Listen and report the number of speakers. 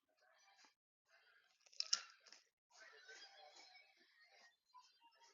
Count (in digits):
0